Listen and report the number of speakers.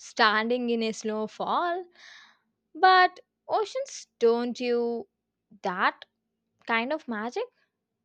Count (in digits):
1